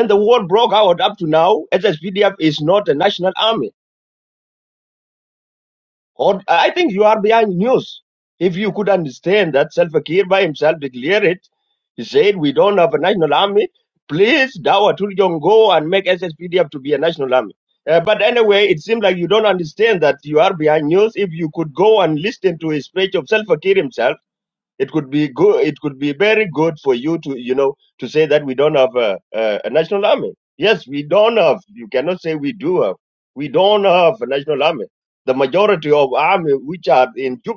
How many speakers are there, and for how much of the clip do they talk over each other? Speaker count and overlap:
one, no overlap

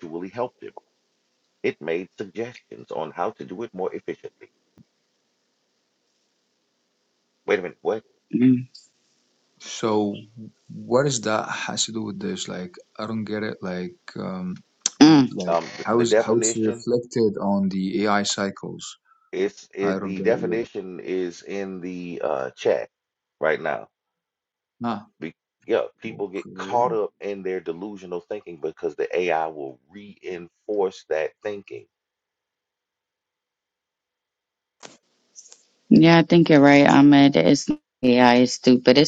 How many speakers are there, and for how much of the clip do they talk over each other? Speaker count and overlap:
three, about 8%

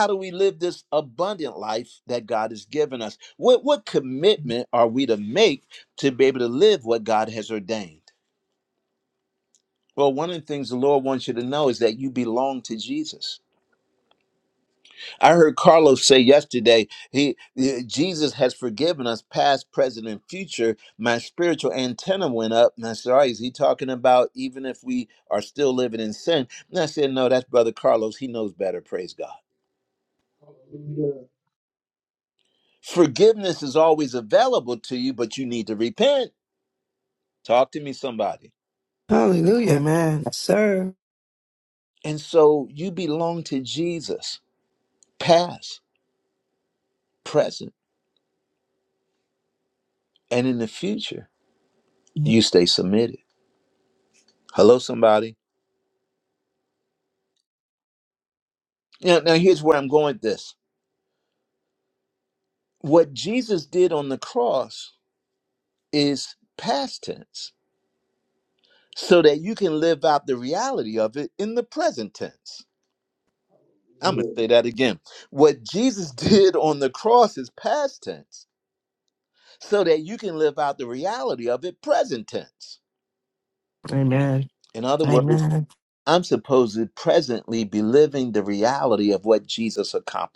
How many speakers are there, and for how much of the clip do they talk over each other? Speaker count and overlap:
four, about 1%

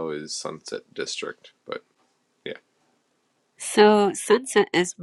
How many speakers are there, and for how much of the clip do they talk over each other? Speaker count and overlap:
two, no overlap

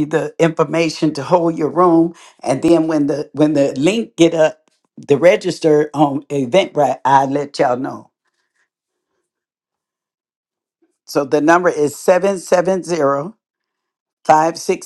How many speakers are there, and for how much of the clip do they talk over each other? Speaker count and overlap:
one, no overlap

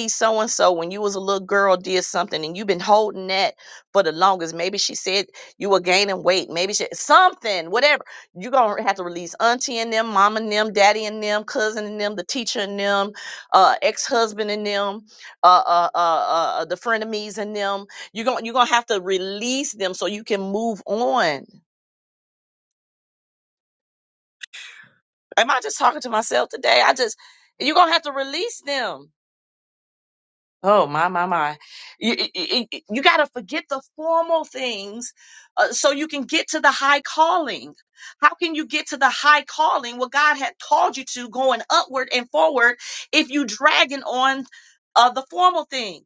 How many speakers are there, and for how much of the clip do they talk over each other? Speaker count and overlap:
one, no overlap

